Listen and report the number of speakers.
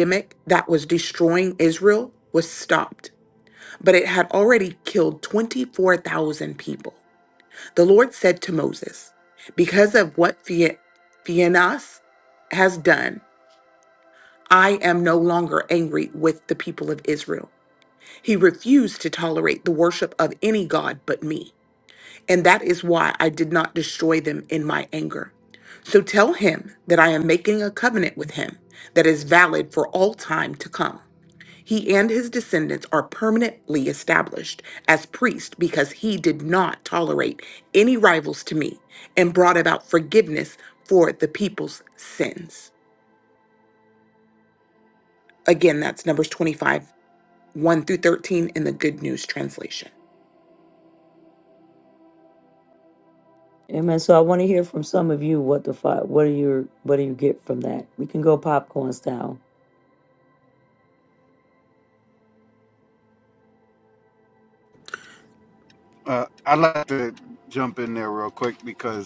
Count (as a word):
three